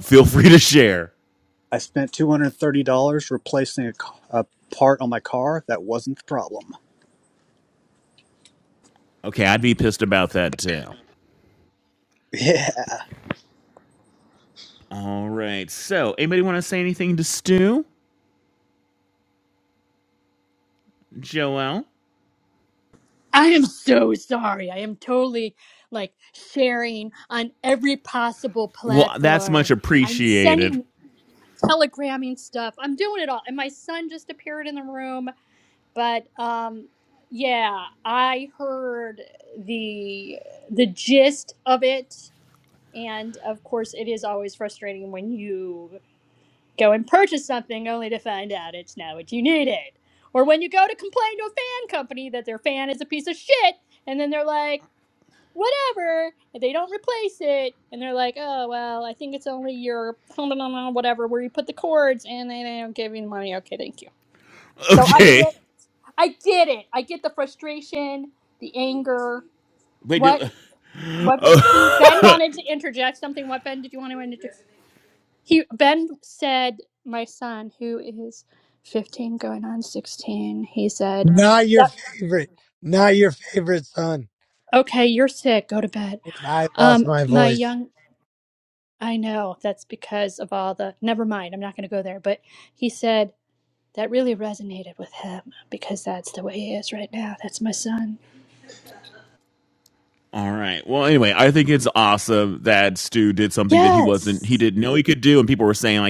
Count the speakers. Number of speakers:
4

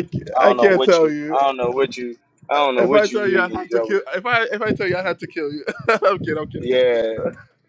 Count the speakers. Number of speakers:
2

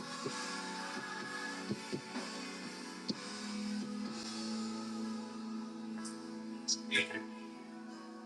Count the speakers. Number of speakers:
0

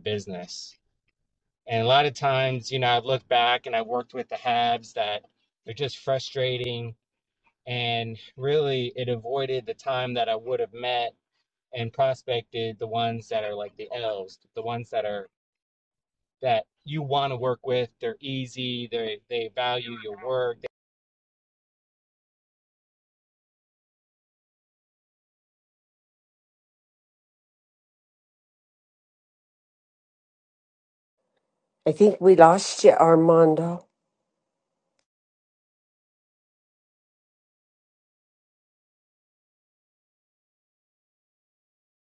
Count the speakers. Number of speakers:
2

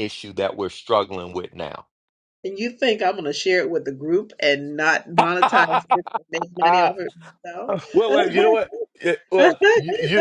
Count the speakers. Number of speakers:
2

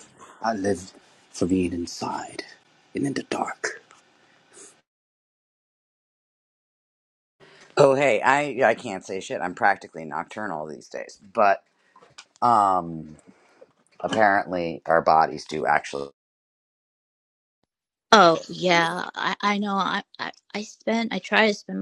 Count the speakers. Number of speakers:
3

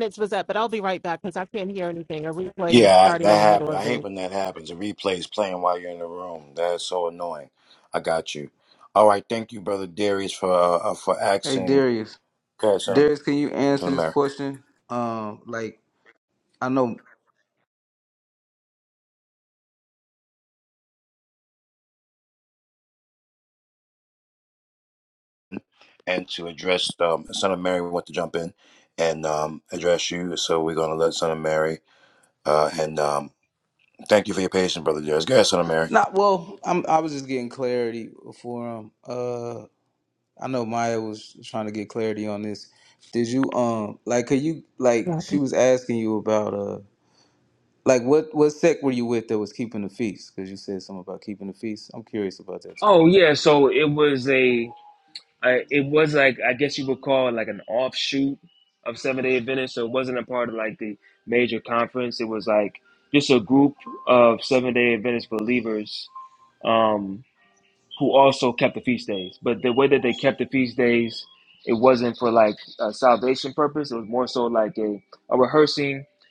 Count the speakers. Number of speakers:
4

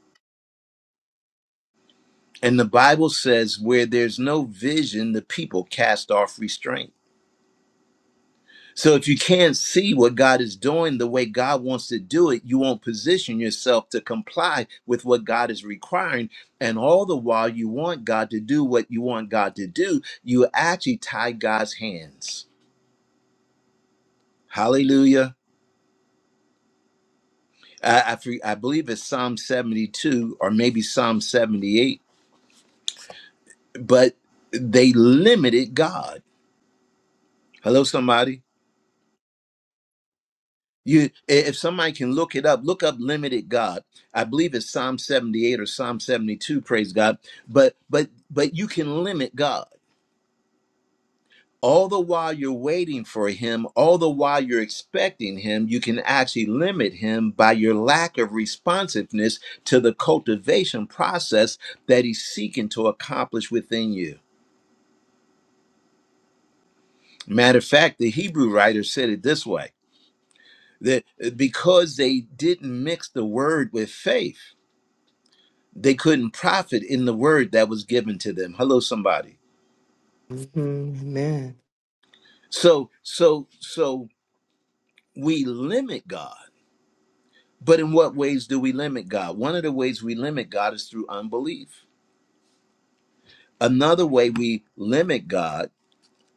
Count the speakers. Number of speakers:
2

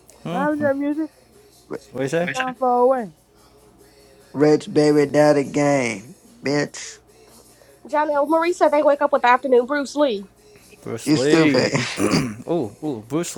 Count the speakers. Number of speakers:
4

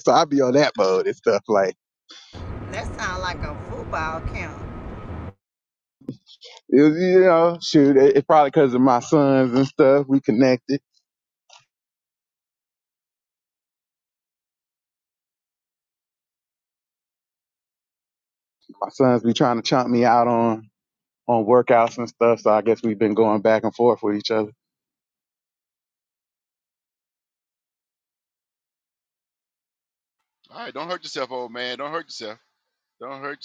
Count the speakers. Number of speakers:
3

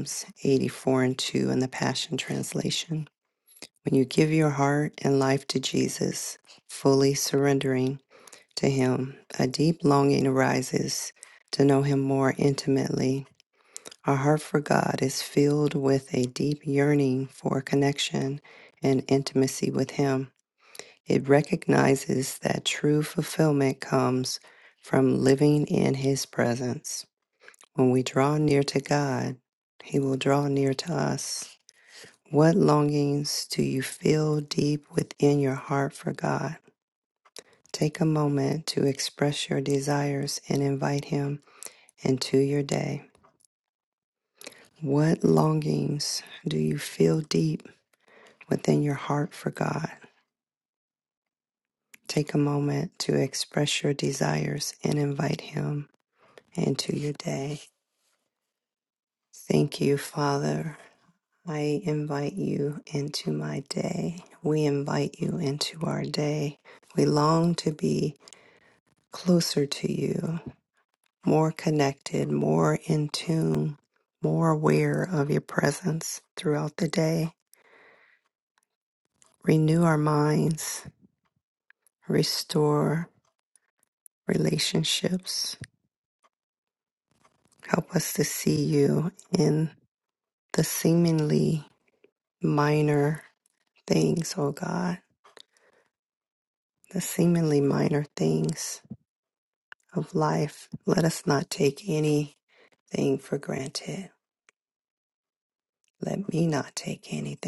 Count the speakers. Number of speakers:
1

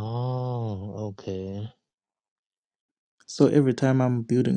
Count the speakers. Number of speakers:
2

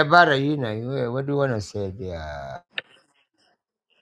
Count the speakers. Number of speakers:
1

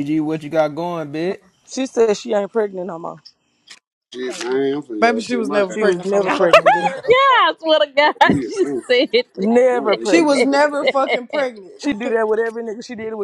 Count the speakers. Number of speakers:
5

